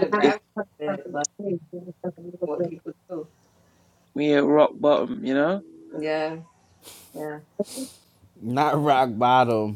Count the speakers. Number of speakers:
4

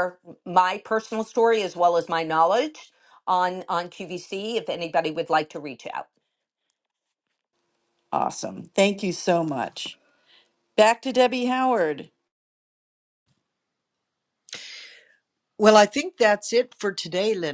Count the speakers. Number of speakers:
3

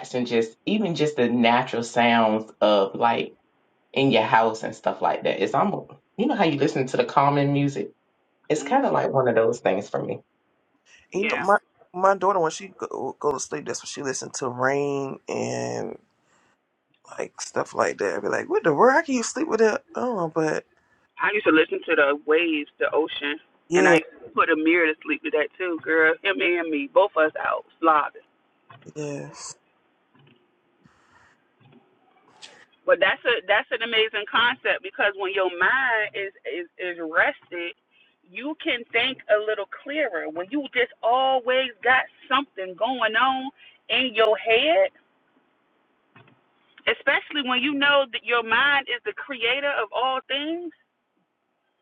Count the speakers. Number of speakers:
3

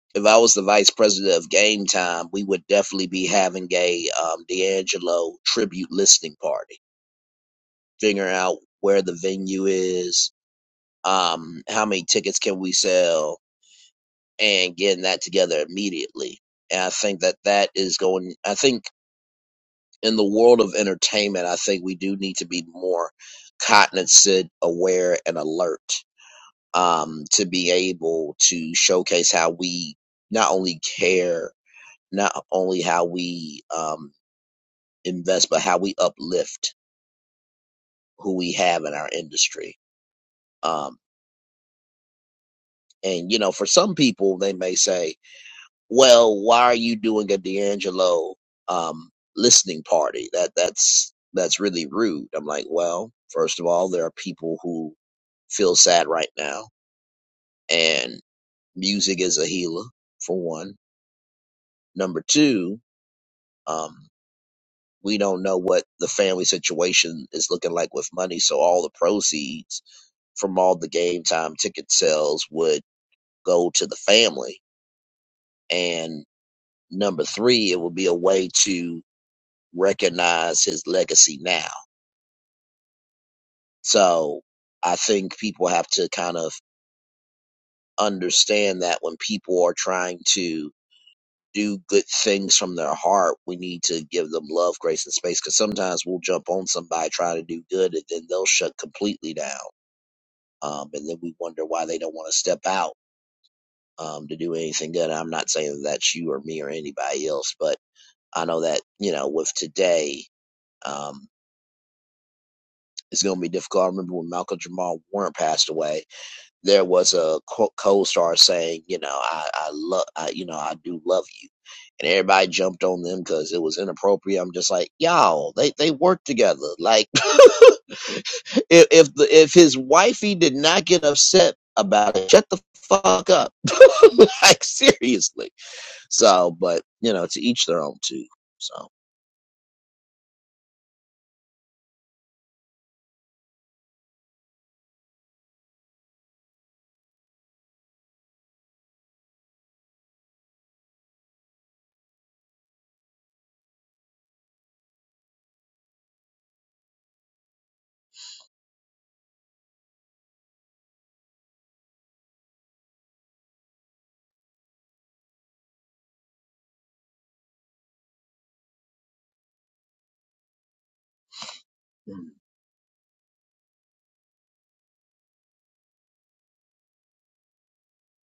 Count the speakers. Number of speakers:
1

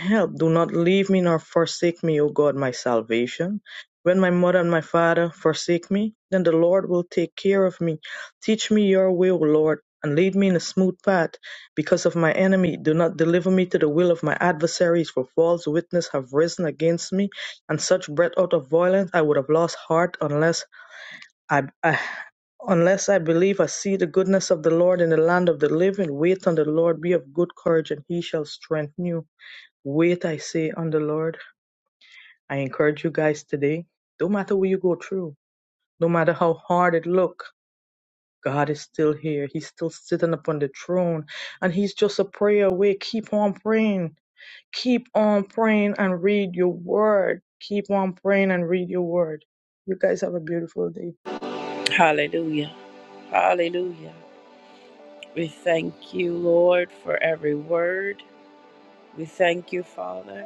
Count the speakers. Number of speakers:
2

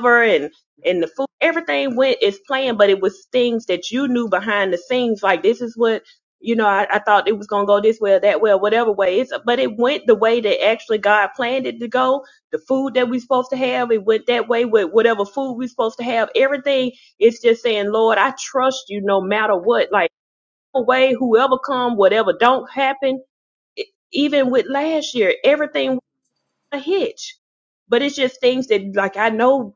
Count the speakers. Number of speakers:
1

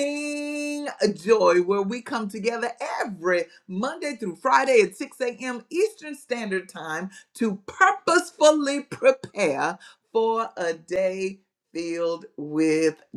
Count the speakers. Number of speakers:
1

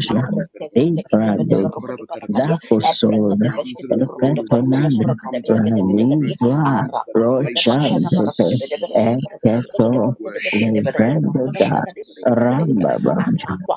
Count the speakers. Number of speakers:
3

